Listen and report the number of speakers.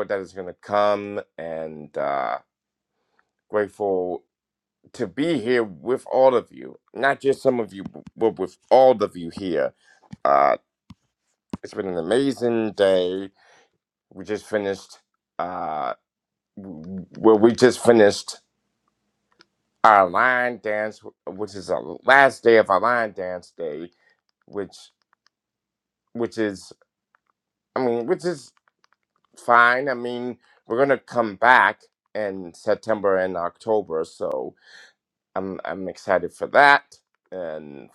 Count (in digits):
1